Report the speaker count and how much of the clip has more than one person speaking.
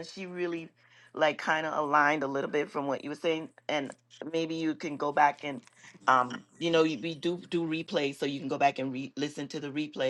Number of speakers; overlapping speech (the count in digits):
1, no overlap